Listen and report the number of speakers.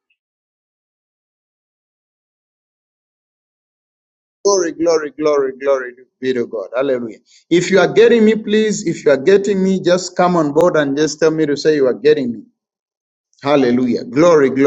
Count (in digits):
1